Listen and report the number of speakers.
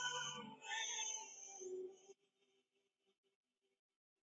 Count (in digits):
0